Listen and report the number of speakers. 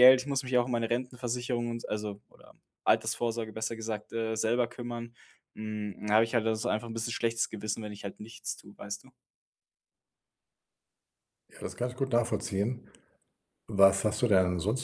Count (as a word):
two